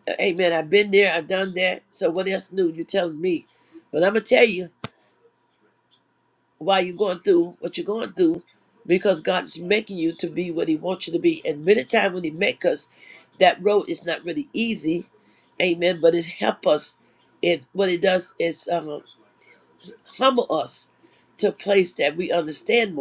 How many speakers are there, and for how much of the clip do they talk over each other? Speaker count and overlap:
one, no overlap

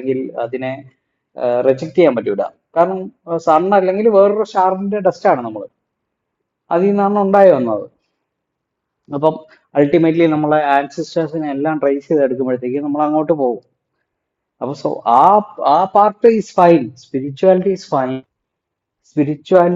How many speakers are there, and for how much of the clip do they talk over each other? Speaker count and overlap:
one, no overlap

